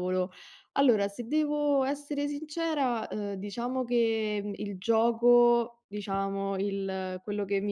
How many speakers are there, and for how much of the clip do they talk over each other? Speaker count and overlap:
one, no overlap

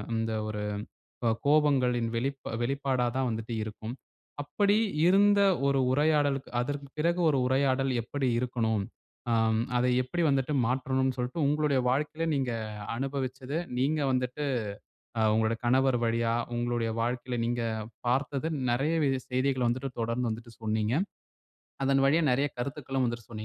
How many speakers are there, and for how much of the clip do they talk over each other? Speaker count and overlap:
one, no overlap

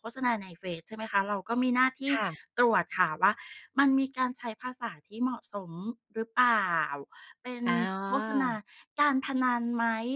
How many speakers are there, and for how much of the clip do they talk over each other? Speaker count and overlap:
two, about 5%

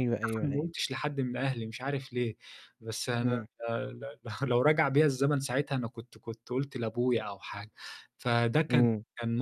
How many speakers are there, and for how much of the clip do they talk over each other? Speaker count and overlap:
two, about 8%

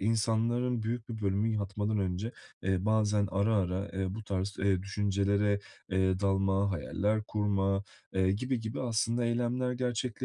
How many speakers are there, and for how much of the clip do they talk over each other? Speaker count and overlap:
one, no overlap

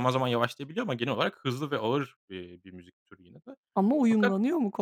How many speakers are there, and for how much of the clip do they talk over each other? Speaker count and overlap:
two, about 5%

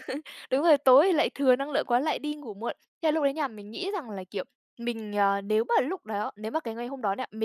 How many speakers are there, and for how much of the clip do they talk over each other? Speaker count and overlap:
one, no overlap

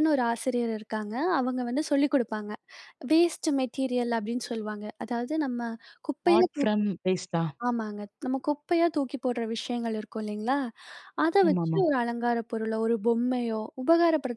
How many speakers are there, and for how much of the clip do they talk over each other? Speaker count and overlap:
two, about 4%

